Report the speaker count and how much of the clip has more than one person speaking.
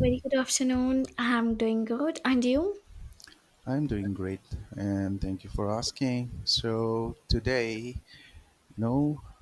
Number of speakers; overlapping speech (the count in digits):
2, no overlap